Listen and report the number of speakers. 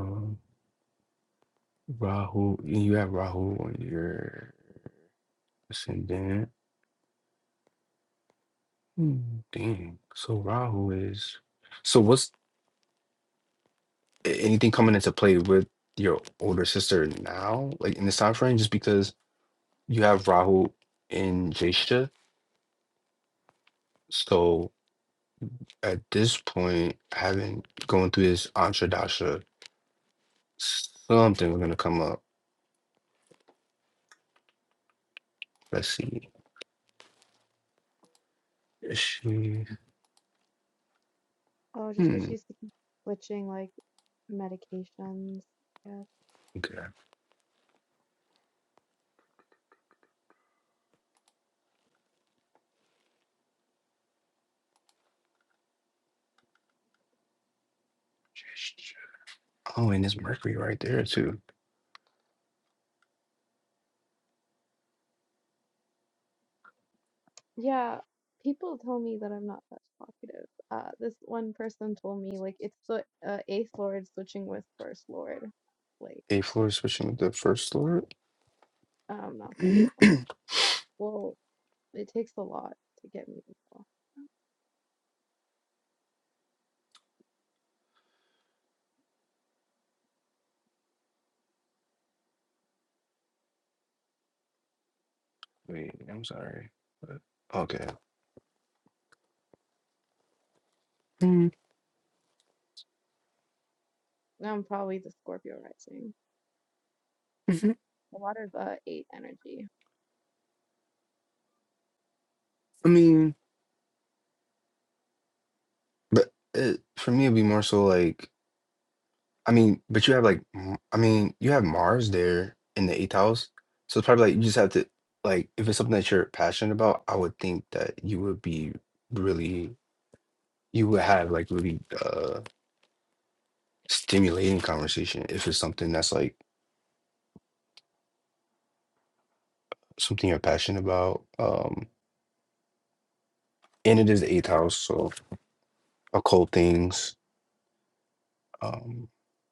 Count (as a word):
two